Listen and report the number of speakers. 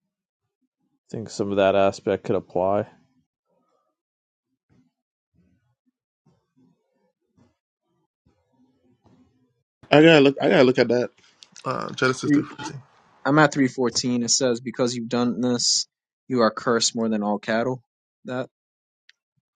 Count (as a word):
three